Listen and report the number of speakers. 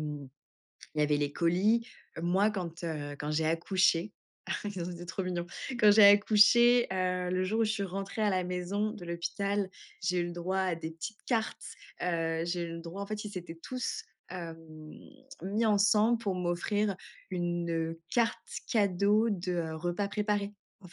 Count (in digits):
1